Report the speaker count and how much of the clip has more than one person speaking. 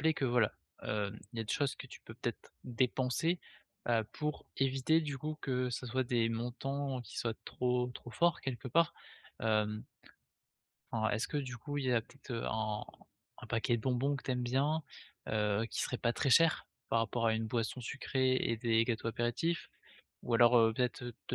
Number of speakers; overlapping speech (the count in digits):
1, no overlap